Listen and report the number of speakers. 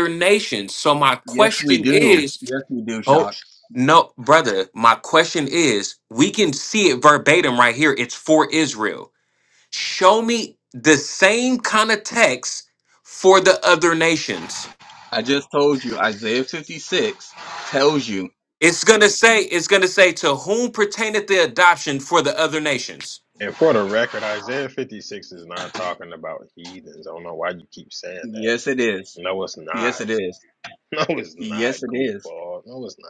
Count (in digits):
3